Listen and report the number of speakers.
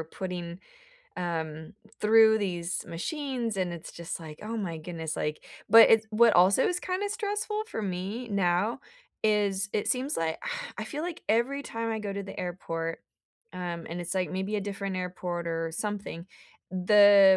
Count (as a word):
one